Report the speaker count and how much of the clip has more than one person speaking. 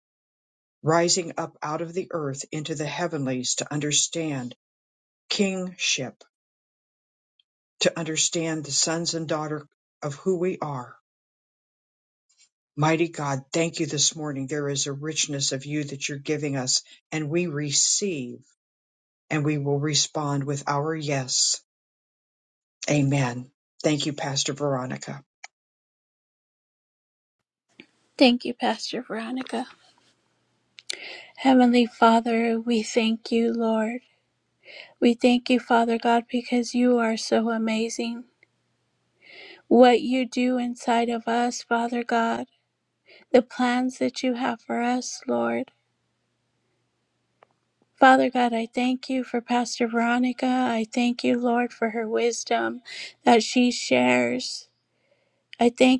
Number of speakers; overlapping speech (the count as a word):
two, no overlap